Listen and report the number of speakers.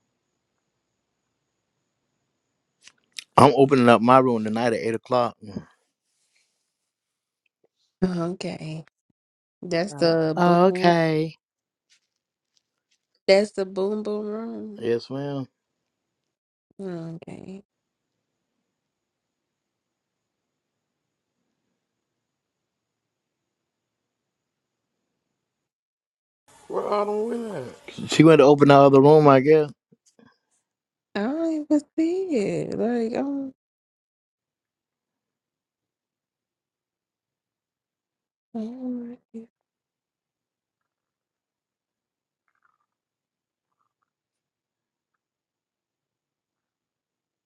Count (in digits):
3